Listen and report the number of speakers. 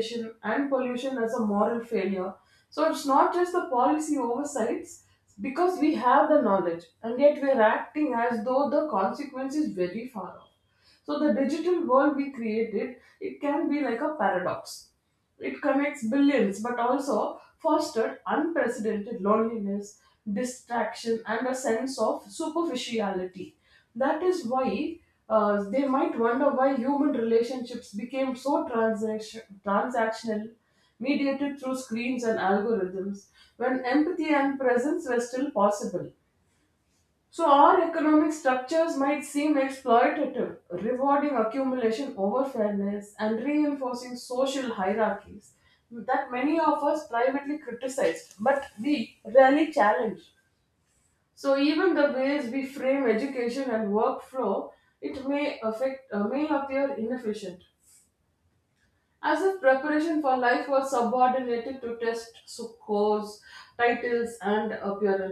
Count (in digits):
1